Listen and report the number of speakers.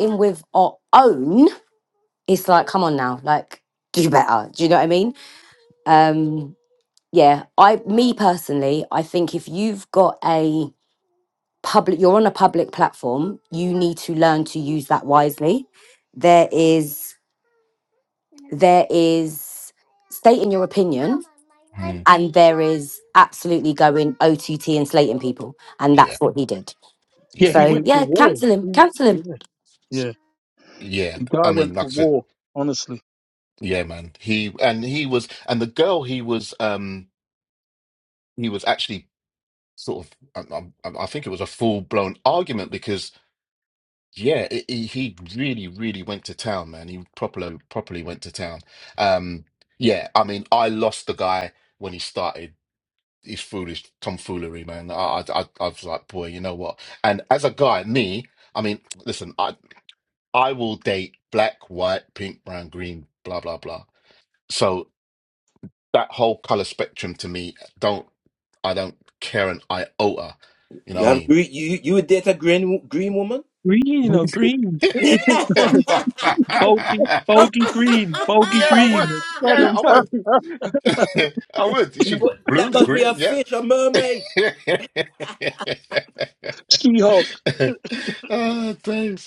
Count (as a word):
five